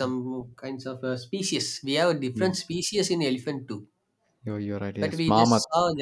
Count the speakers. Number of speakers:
2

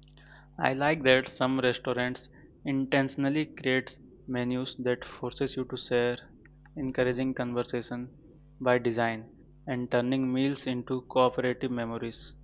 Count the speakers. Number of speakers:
1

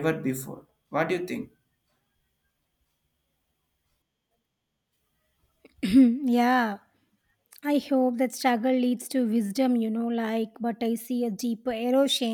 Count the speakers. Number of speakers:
2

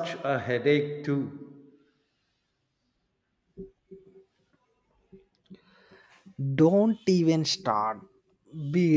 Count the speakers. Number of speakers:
2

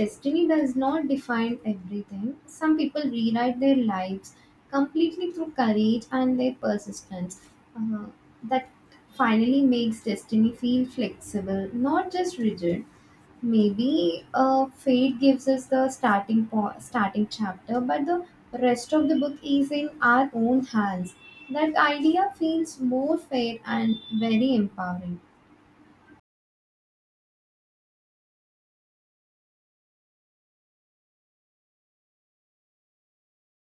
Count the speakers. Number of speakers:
1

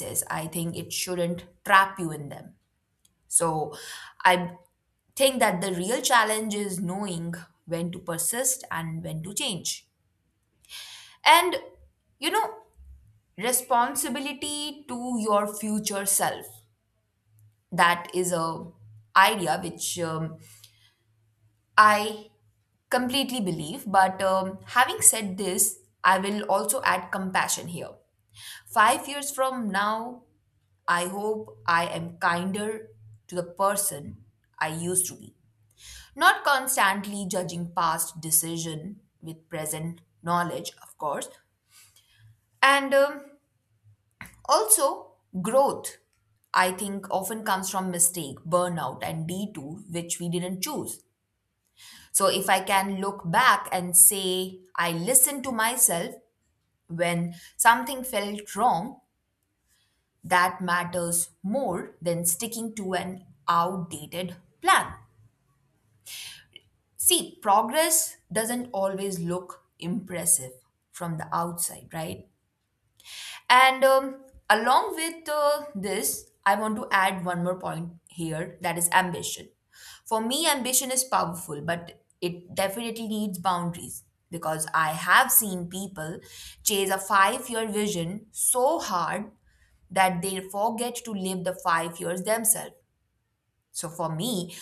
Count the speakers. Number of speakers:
1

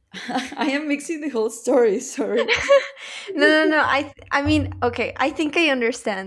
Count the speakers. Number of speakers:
2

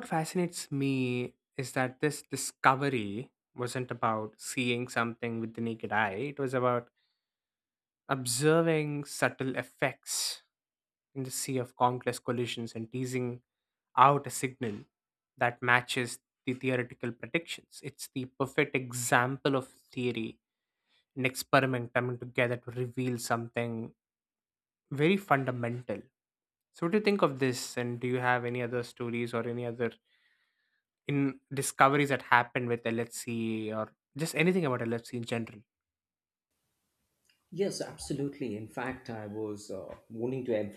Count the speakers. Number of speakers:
2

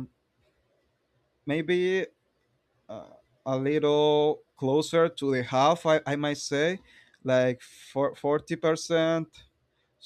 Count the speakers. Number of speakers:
1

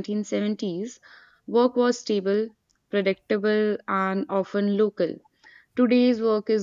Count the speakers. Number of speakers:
1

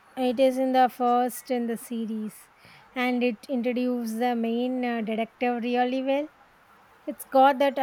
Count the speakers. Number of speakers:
1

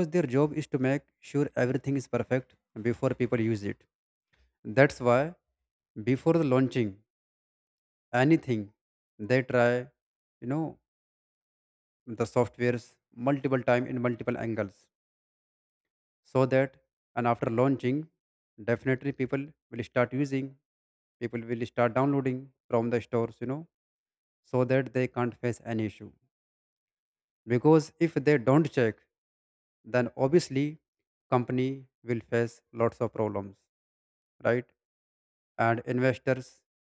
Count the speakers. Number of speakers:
1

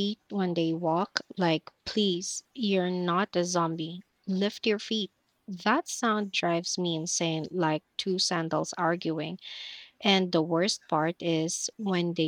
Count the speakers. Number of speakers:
1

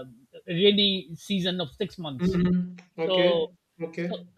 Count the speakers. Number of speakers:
2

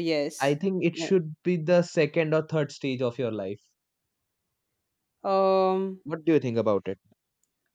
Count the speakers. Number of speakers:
2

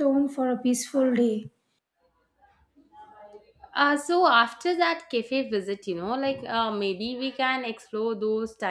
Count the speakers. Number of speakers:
2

